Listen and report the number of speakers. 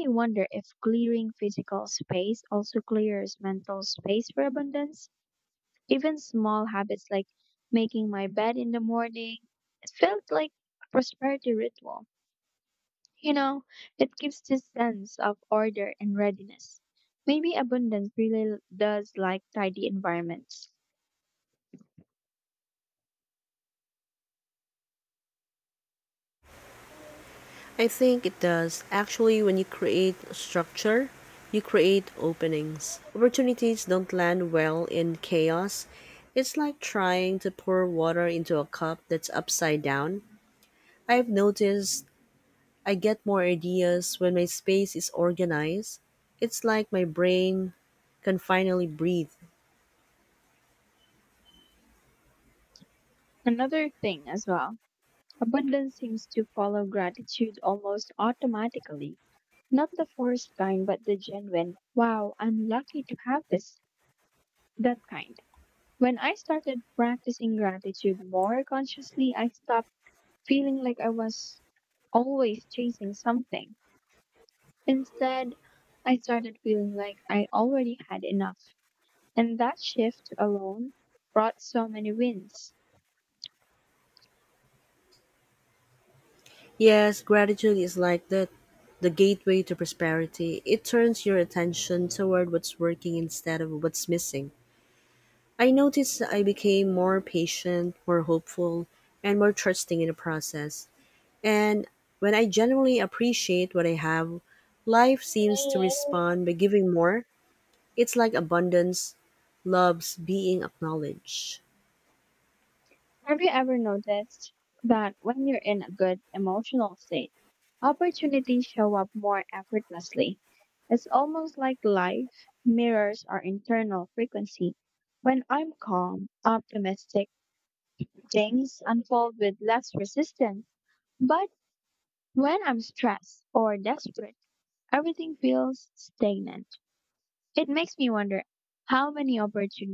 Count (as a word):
two